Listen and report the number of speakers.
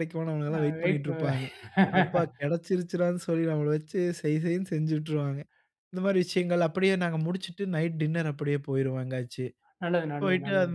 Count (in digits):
2